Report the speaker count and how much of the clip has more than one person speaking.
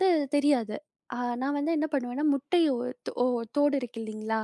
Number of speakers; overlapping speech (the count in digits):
1, no overlap